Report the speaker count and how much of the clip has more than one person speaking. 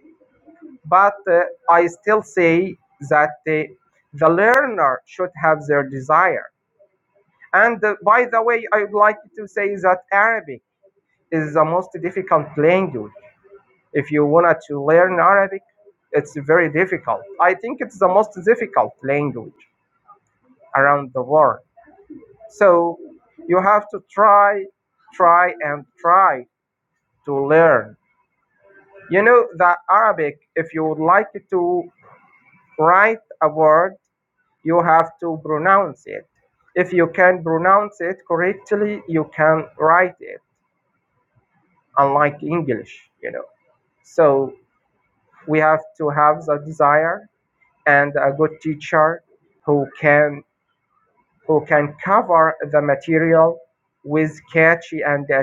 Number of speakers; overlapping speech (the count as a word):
one, no overlap